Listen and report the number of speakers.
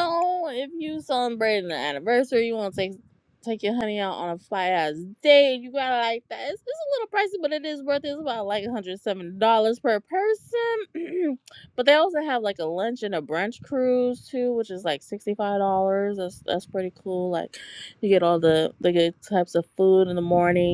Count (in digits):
1